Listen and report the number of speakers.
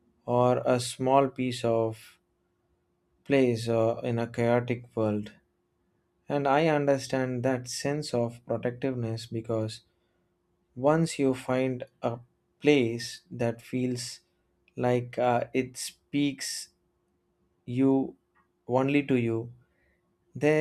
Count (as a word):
one